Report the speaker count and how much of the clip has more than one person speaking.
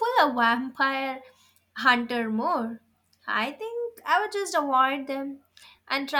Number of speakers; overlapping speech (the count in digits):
1, no overlap